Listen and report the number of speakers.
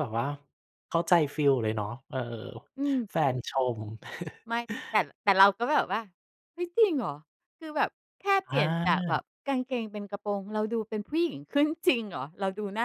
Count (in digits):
2